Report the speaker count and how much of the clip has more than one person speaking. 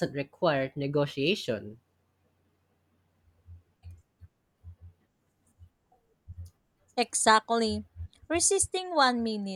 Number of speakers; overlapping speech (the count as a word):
two, no overlap